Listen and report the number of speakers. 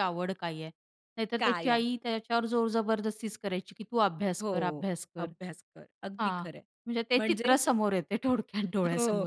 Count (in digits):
2